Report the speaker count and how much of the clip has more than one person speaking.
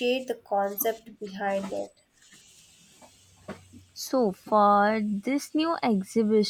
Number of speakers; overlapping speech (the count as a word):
two, no overlap